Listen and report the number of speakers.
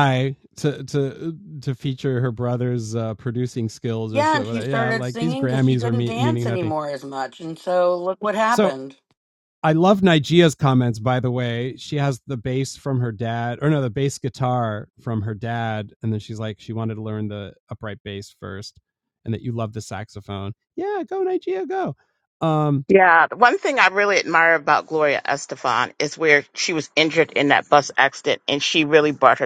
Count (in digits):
3